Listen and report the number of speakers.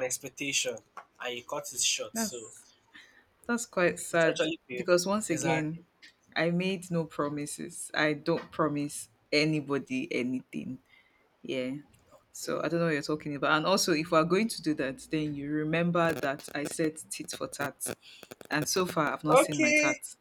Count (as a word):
two